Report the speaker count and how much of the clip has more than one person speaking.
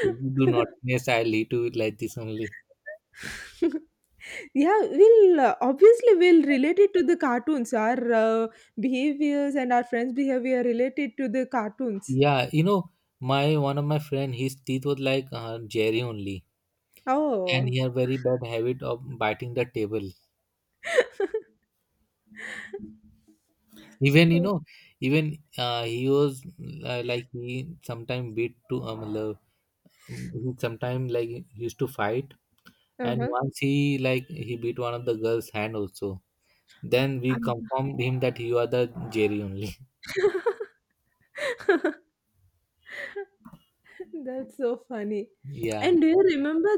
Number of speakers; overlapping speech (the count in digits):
2, about 2%